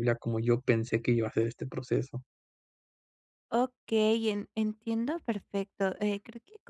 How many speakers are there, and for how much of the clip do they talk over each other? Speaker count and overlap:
2, no overlap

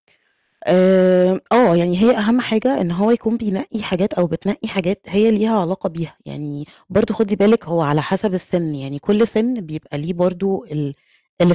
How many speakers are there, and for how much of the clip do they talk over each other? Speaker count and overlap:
1, no overlap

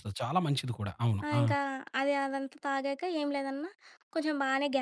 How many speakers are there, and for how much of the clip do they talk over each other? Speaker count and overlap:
2, about 6%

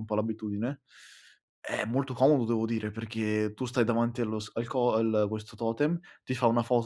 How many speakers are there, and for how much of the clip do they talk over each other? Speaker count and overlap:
1, no overlap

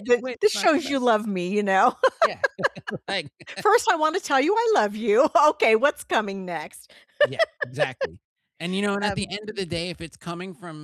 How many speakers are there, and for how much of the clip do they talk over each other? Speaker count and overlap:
2, about 12%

